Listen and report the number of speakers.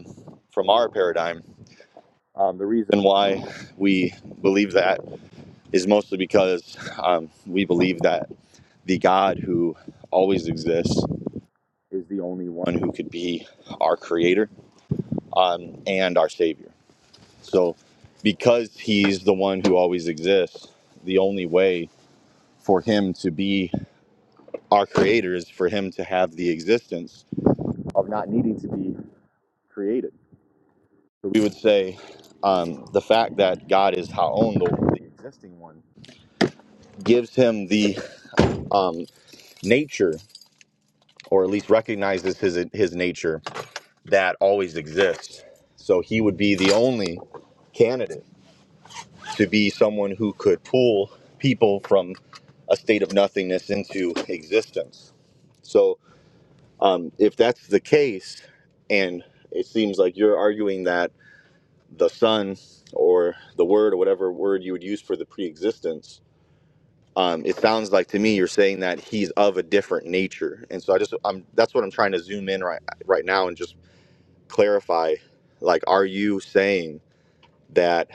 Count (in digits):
1